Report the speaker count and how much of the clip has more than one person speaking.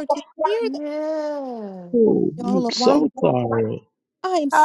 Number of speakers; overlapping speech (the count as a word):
three, about 21%